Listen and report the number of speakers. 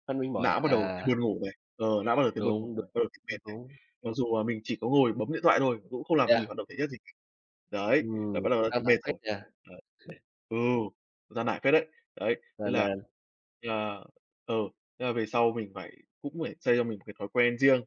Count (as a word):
two